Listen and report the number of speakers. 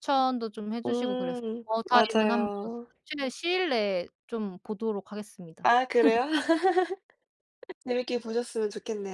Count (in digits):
2